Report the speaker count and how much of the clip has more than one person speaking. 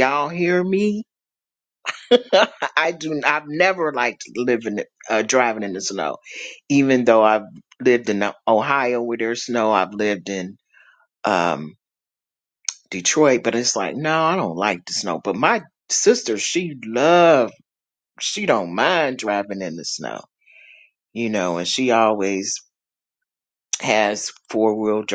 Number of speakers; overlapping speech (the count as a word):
one, no overlap